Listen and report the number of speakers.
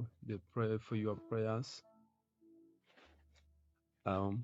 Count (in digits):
1